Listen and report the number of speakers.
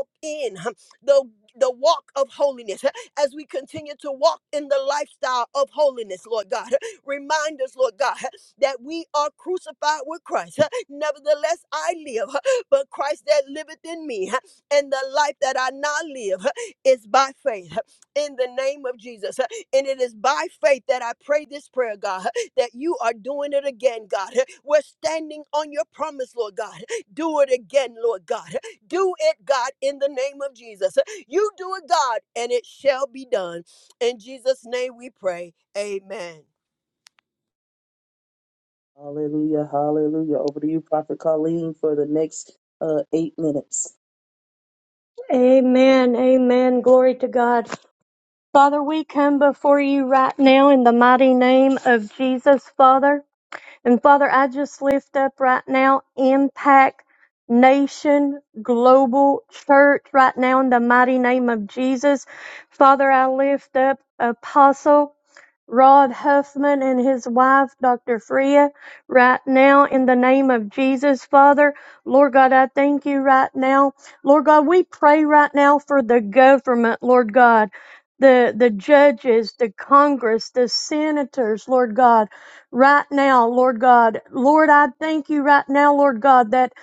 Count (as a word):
three